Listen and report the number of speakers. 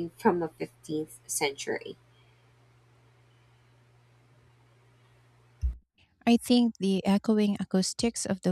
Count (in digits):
2